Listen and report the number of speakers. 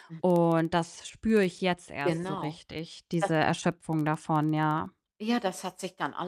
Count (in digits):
2